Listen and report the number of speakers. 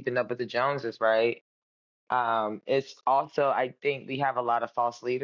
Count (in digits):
1